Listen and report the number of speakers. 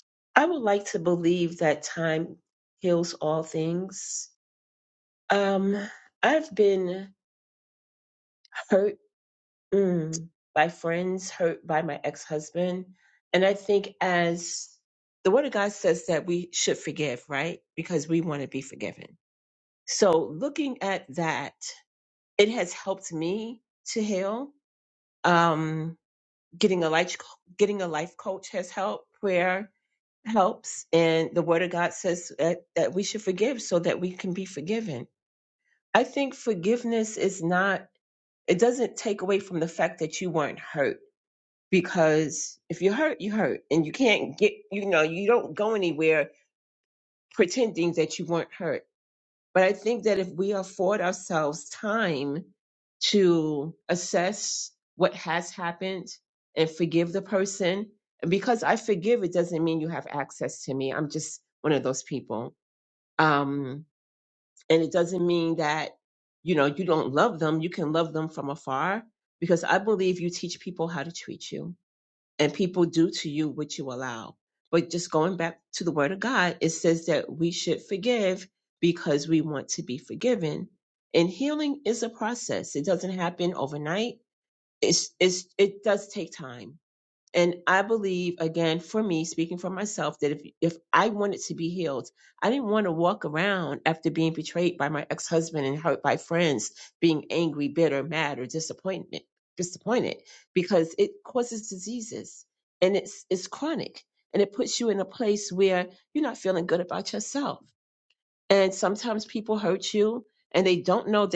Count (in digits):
1